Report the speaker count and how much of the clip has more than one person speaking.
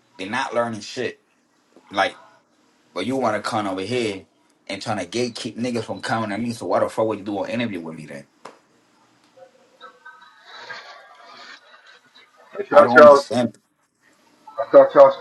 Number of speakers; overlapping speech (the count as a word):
two, about 3%